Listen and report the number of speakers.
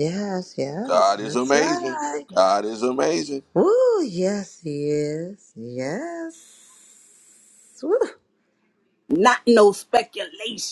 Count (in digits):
3